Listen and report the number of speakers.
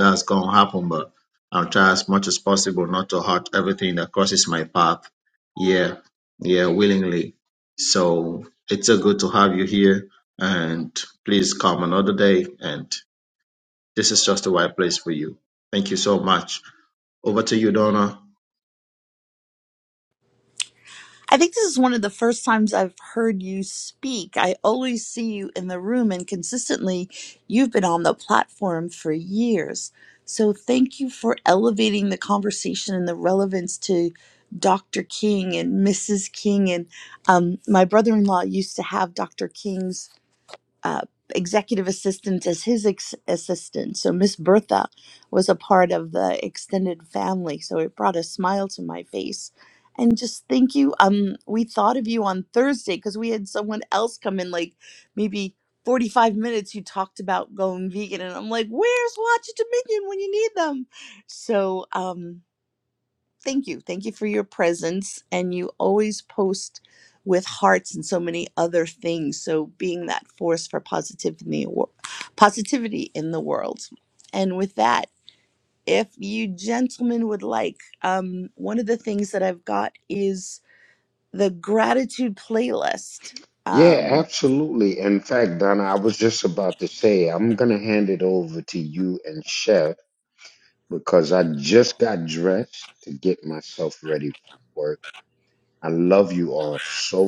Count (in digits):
3